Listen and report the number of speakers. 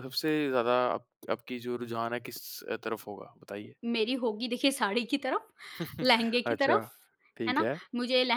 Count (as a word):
two